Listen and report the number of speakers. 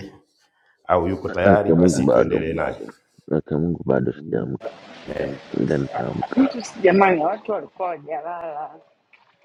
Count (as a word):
three